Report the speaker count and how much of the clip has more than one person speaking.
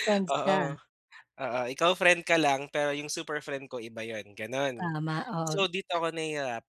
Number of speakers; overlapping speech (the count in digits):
2, about 9%